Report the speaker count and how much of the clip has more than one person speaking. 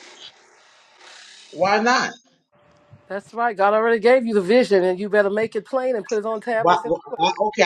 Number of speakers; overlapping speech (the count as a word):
two, about 3%